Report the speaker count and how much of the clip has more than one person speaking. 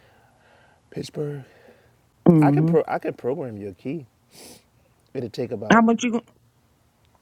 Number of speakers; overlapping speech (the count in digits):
2, about 6%